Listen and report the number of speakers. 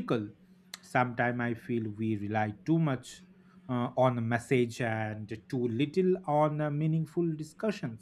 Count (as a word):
one